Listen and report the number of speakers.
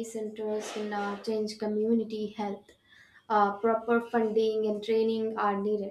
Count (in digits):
1